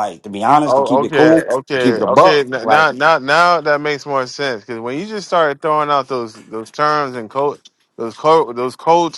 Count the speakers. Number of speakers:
2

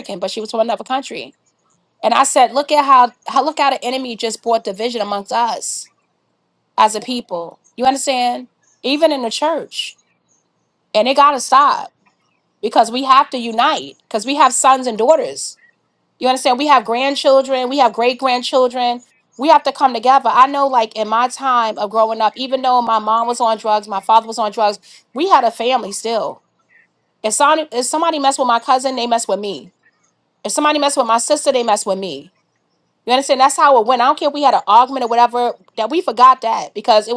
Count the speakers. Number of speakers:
1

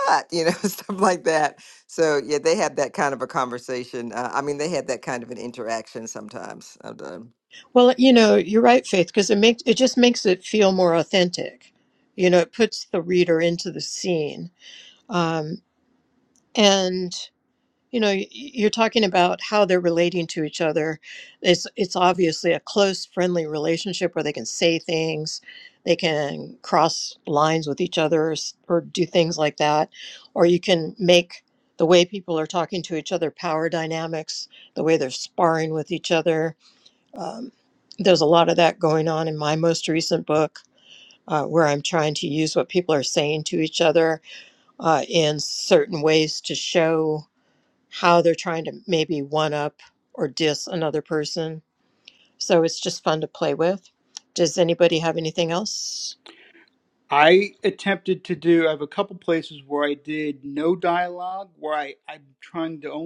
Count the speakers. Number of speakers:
3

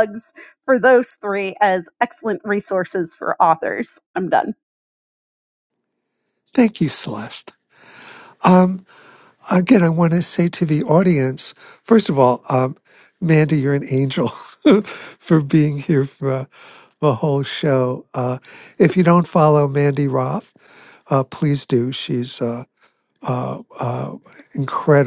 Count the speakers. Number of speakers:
2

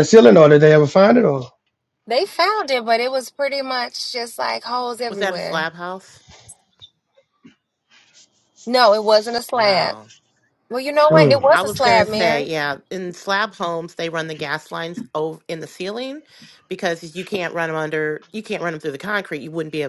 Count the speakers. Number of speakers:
3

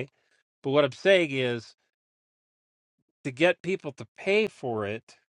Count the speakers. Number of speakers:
1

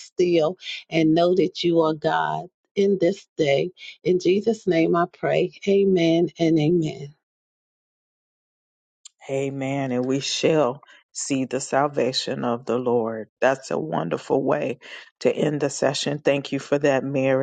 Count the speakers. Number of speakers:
2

